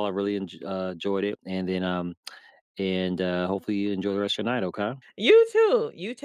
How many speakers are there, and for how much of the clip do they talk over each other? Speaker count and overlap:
2, no overlap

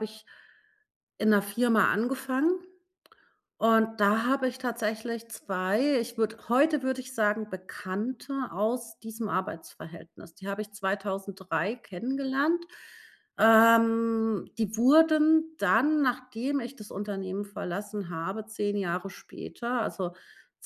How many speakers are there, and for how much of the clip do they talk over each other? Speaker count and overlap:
1, no overlap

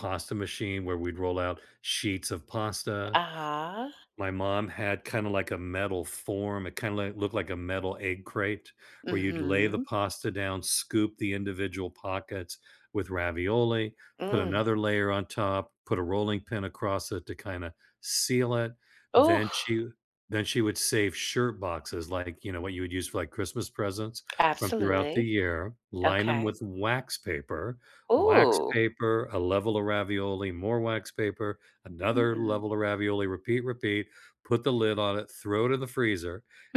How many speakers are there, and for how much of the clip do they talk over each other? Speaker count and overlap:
2, about 10%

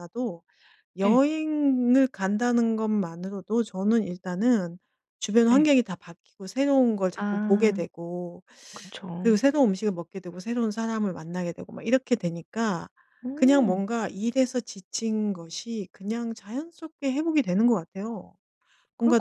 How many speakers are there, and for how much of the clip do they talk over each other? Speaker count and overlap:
2, about 9%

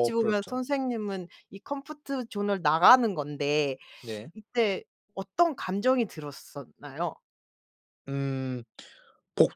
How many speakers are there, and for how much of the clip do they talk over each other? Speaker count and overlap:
2, about 6%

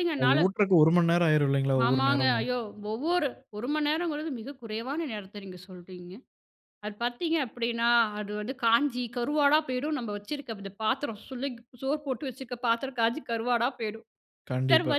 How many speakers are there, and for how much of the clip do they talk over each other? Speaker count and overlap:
2, about 8%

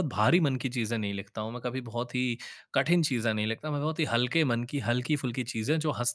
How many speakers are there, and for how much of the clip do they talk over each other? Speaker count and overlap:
1, no overlap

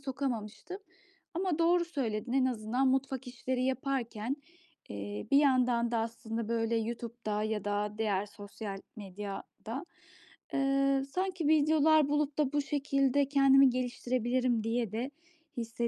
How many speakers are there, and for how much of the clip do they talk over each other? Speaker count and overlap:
1, no overlap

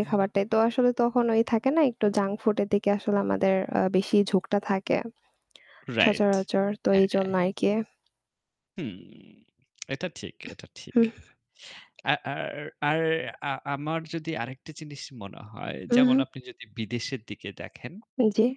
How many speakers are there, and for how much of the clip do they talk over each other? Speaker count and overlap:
2, about 6%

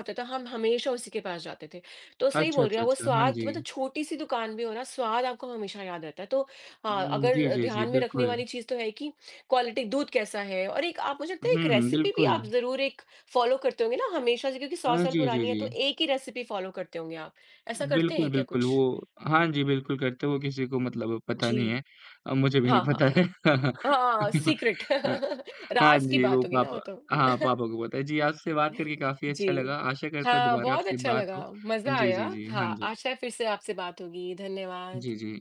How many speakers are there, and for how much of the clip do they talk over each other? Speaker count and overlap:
2, about 29%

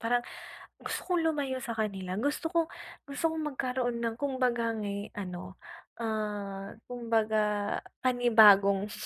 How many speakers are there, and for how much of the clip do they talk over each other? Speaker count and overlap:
1, no overlap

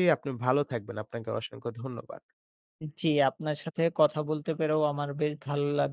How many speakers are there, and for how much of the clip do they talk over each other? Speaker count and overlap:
2, no overlap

